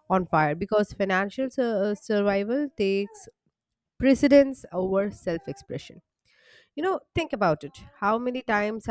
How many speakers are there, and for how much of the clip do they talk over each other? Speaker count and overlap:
1, no overlap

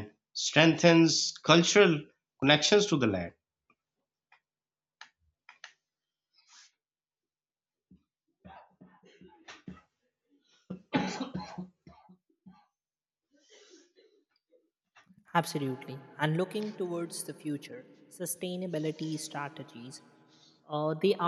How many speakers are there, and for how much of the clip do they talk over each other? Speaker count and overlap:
2, no overlap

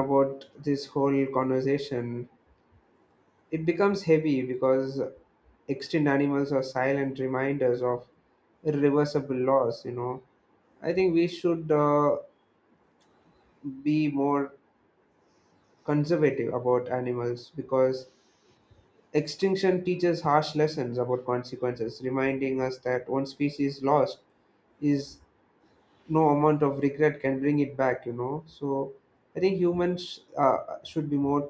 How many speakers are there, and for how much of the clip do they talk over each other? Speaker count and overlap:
1, no overlap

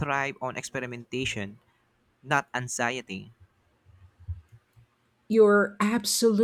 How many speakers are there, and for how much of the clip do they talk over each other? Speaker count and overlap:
2, no overlap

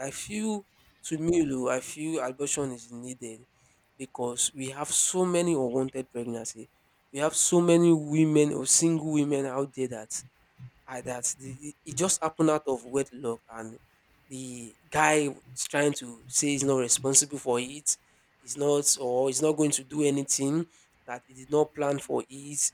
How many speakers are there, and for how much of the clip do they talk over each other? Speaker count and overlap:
1, no overlap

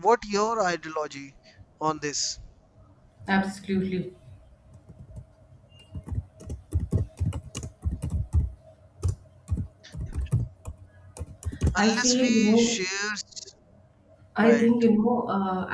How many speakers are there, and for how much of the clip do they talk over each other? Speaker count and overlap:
2, about 9%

